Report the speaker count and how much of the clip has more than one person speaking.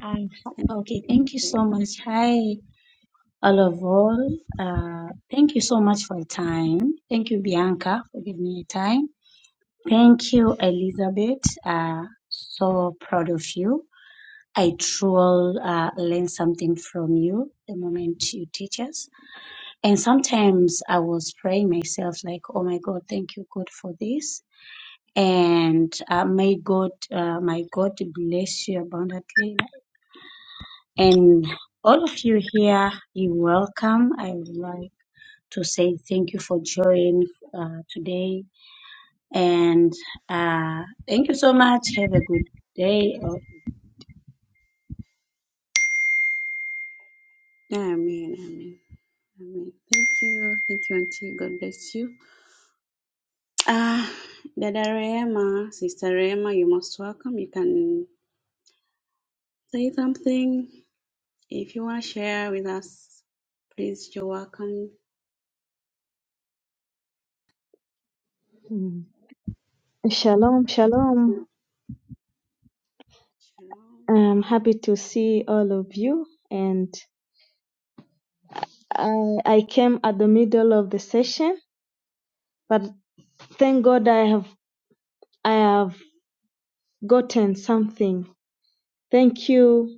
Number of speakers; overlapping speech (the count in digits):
3, about 1%